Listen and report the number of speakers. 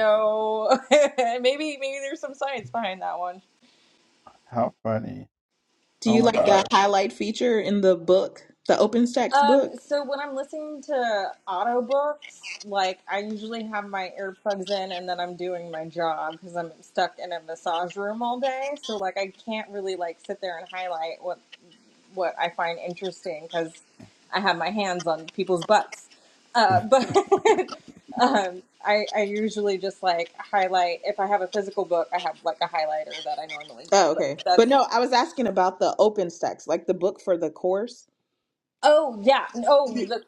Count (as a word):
three